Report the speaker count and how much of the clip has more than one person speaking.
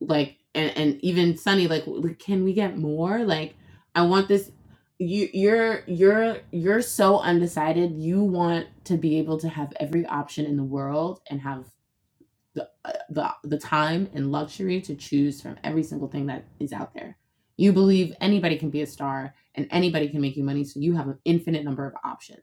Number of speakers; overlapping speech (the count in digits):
1, no overlap